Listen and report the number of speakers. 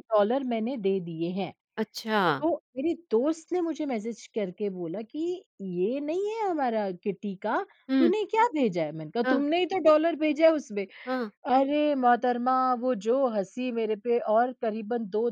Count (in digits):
2